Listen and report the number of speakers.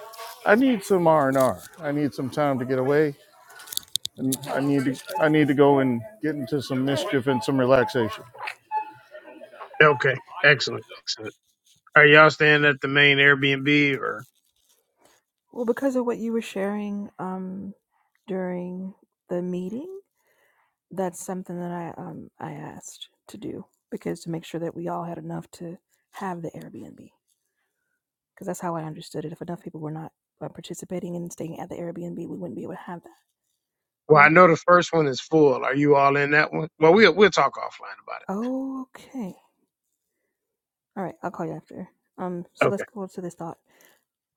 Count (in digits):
3